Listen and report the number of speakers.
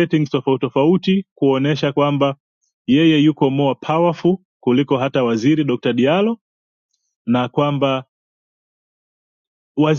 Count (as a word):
one